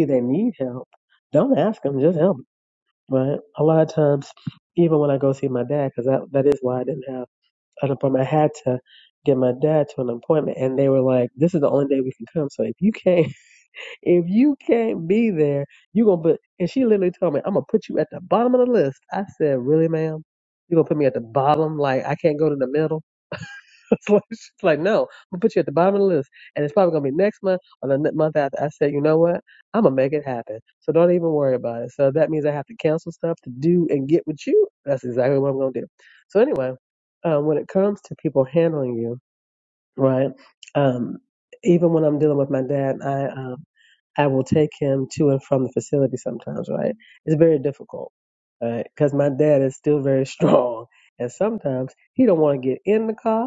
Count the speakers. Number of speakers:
1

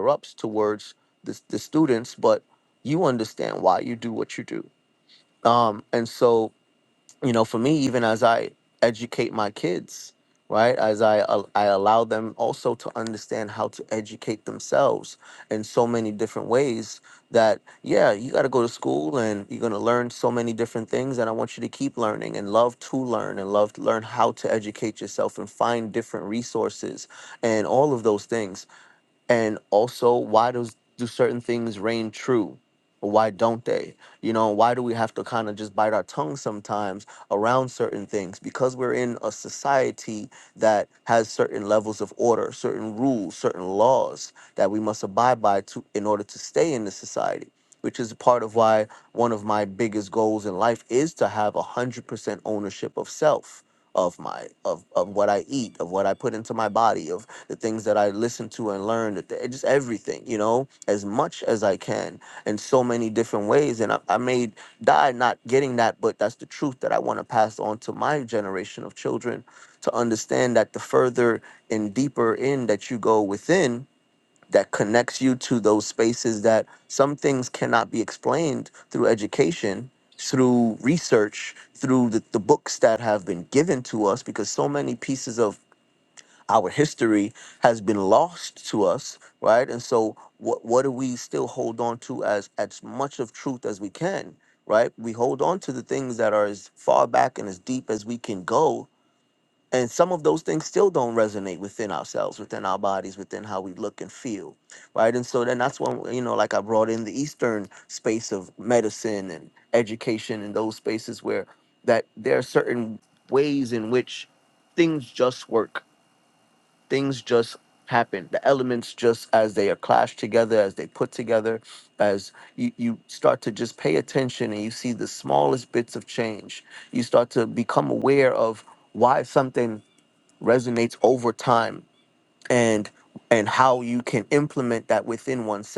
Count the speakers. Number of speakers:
1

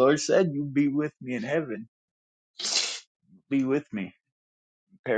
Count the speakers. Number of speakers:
1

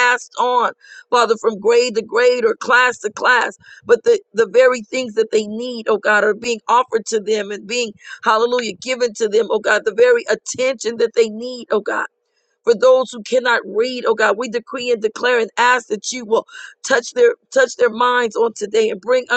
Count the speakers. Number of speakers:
1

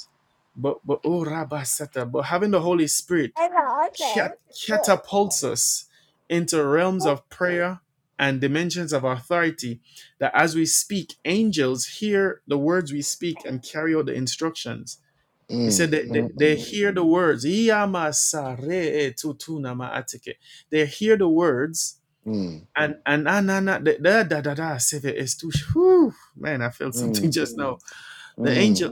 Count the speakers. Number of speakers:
2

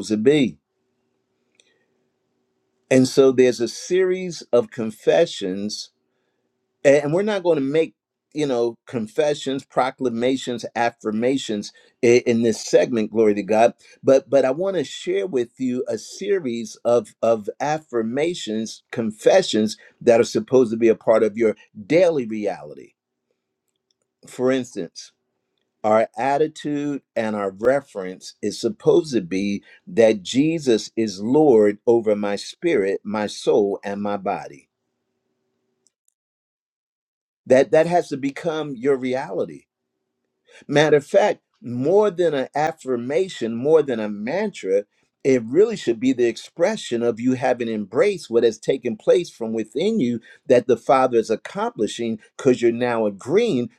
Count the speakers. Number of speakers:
1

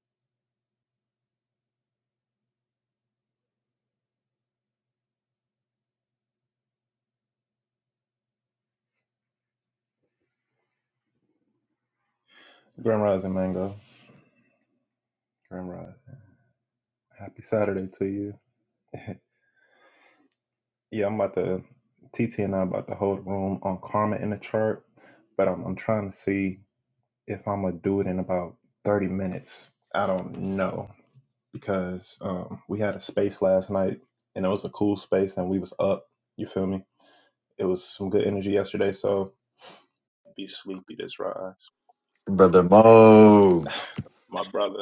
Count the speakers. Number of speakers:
2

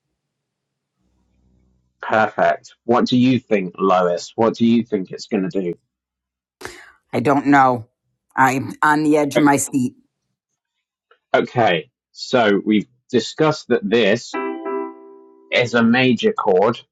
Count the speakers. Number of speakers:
2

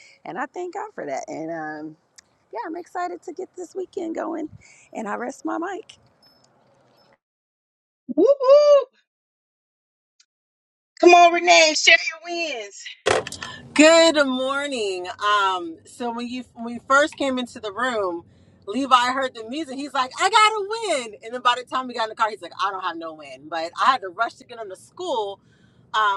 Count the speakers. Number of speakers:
3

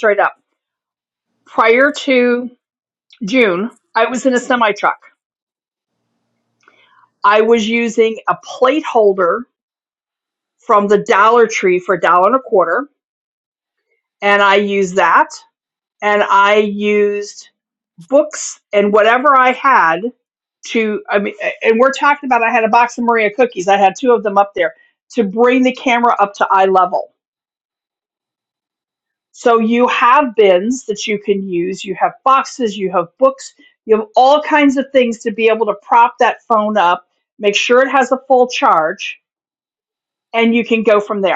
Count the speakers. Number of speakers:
1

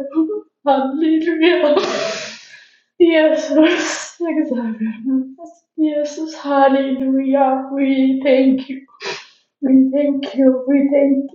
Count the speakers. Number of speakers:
1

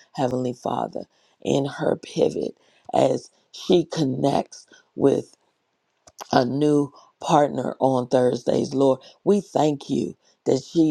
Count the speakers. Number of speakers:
1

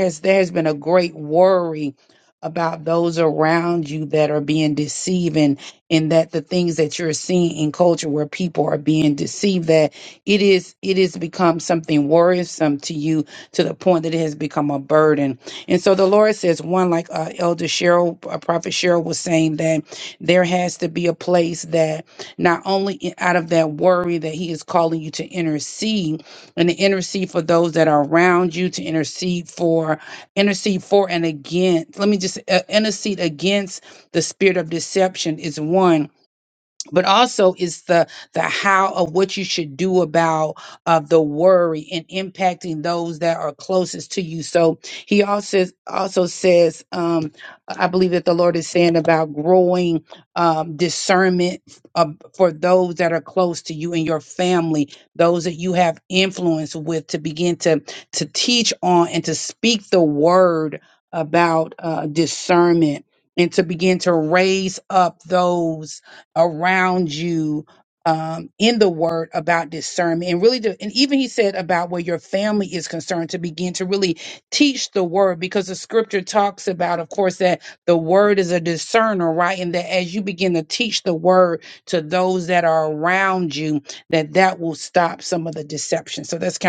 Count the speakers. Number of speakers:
1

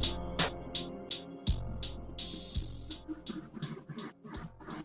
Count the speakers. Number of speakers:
0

